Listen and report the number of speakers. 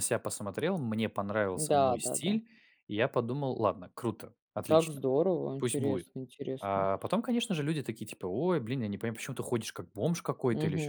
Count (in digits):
2